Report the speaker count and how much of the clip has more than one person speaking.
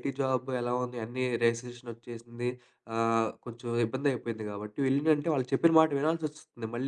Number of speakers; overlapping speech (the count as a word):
one, no overlap